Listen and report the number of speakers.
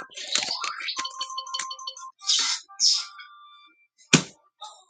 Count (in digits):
0